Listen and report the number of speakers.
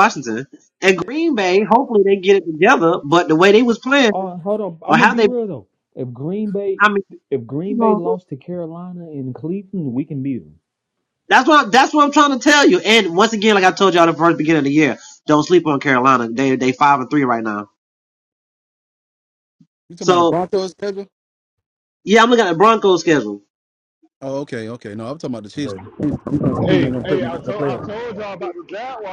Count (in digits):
4